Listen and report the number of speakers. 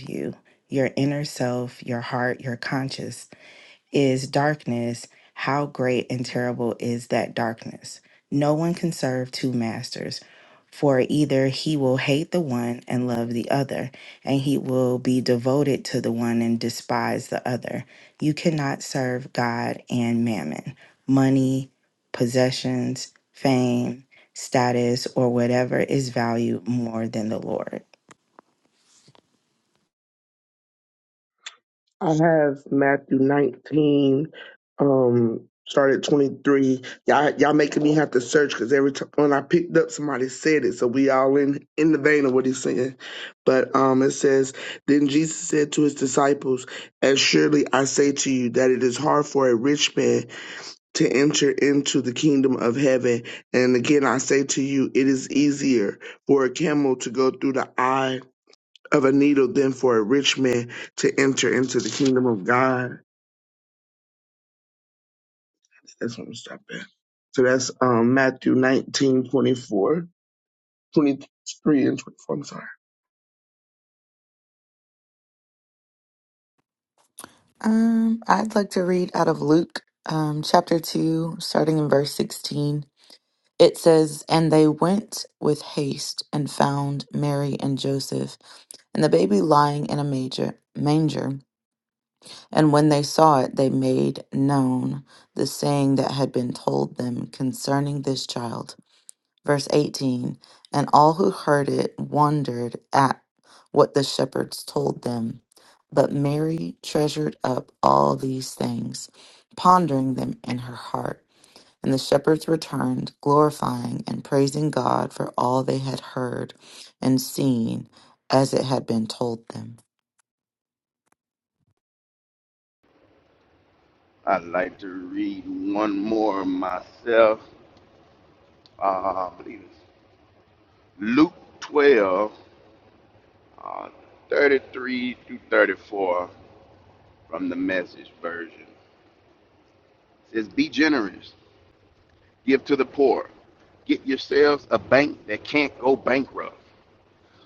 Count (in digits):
4